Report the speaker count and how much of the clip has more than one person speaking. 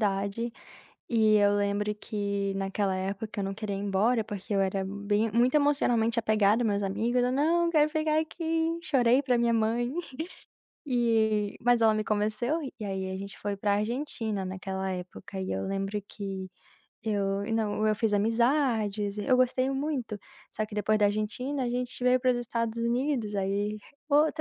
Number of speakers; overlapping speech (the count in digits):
1, no overlap